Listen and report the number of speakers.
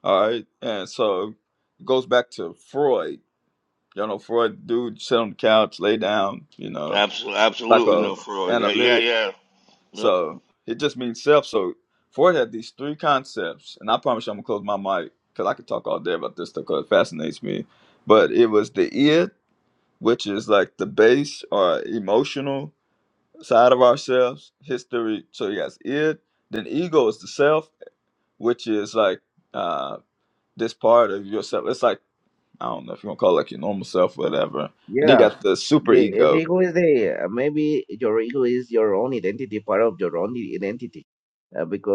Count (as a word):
three